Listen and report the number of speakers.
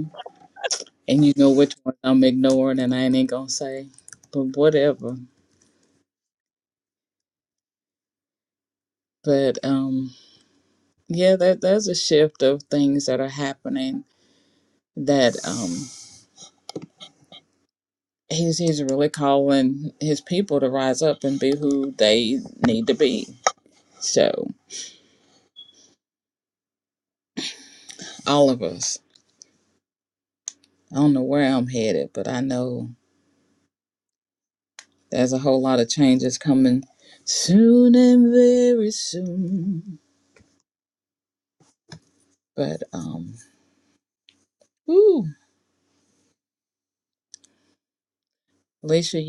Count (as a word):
one